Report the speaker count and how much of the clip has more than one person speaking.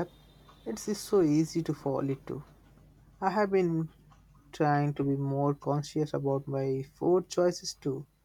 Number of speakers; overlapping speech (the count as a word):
one, no overlap